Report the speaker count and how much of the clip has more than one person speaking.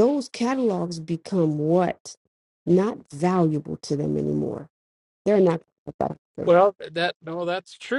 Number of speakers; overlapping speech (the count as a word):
two, about 1%